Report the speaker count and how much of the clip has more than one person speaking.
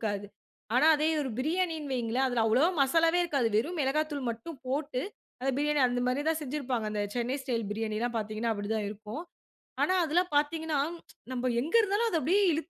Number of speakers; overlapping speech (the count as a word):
one, no overlap